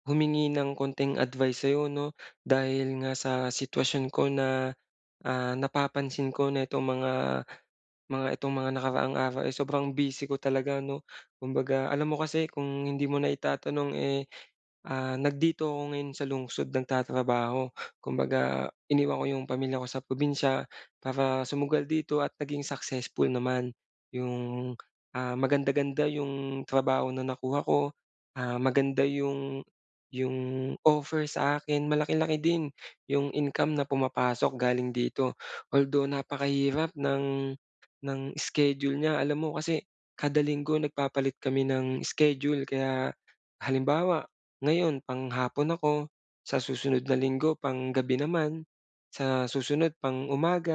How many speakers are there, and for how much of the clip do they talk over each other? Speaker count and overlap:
1, no overlap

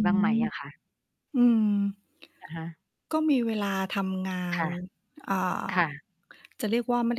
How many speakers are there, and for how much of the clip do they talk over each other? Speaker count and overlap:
2, about 9%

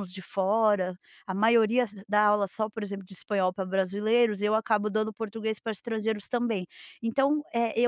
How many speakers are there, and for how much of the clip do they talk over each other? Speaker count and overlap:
1, no overlap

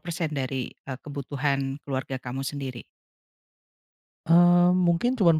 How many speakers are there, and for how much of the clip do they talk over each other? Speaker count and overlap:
2, no overlap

